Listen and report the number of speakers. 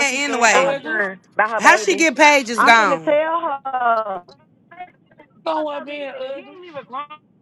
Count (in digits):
3